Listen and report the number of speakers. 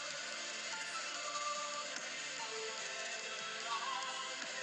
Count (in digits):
0